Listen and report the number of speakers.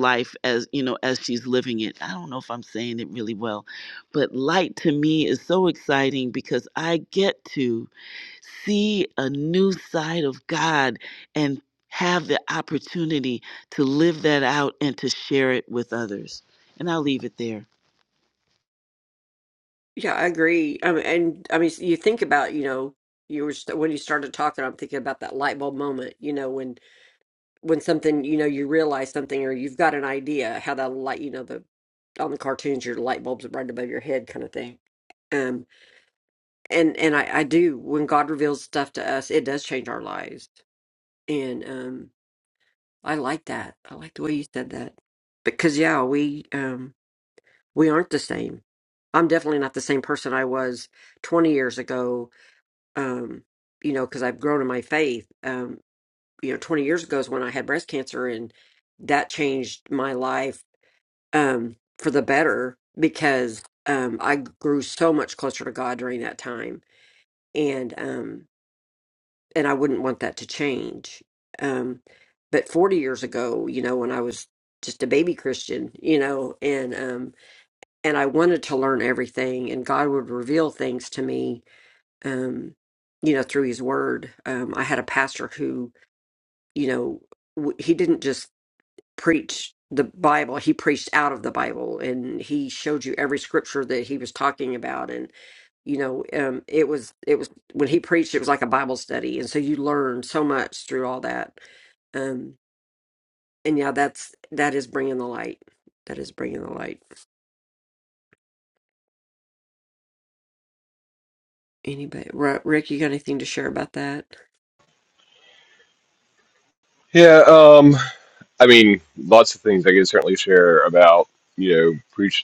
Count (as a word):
three